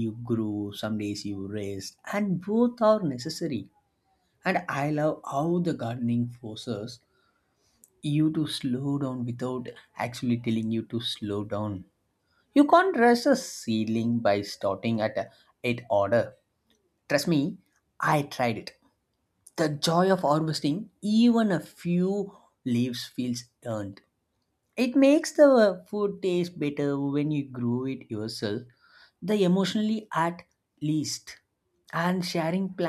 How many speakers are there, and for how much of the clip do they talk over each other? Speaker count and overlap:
1, no overlap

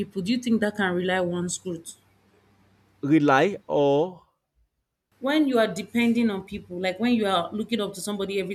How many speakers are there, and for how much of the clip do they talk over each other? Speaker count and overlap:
2, no overlap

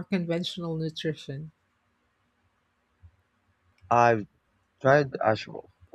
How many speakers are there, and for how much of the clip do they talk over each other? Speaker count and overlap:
2, no overlap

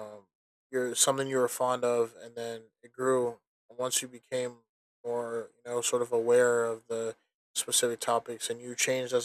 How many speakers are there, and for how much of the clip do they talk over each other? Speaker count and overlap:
1, no overlap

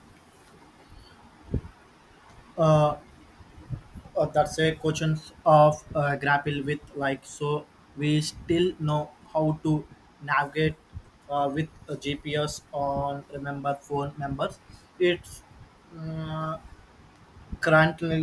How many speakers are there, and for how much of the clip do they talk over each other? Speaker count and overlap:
1, no overlap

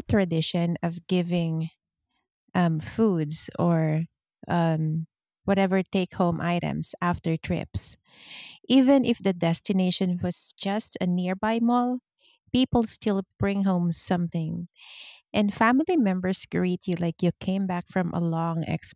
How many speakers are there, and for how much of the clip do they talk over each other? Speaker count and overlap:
1, no overlap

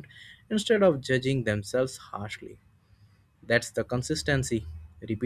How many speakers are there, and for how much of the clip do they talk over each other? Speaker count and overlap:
1, no overlap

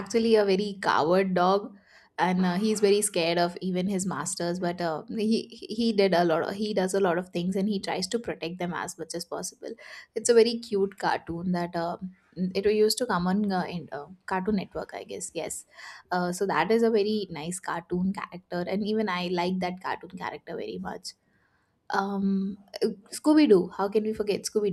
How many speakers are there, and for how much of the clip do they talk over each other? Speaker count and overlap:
1, no overlap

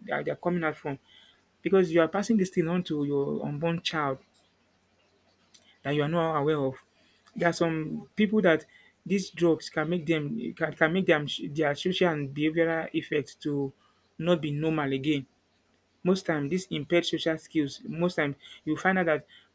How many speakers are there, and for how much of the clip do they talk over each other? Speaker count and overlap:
1, no overlap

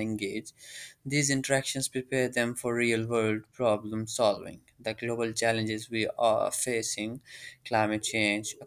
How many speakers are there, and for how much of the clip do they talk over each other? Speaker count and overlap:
1, no overlap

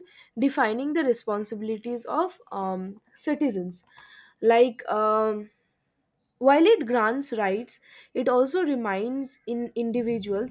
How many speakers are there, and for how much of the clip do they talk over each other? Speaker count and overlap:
1, no overlap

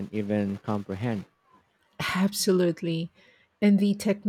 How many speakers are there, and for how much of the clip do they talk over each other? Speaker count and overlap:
2, no overlap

